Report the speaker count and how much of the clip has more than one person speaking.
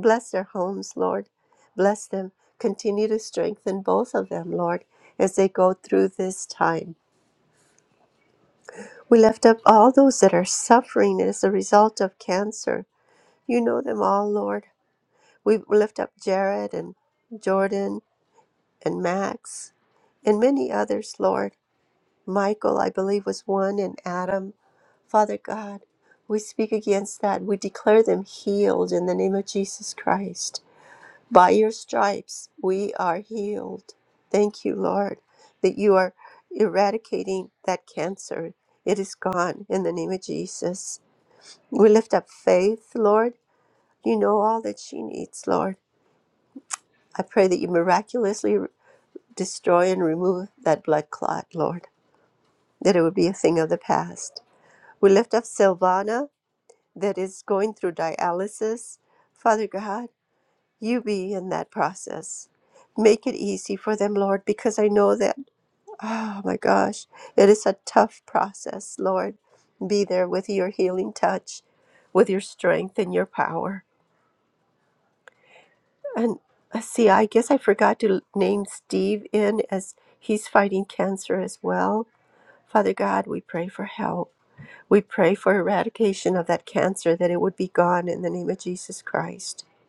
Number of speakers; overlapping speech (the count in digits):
1, no overlap